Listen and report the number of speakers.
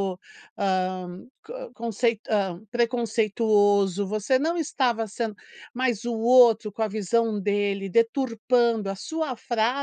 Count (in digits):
1